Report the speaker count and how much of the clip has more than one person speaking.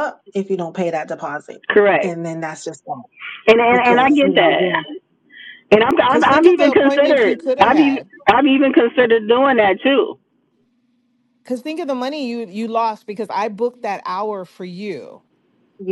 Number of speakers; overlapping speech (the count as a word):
three, about 19%